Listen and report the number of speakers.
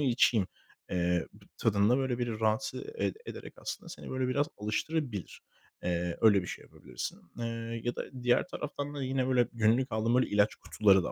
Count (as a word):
one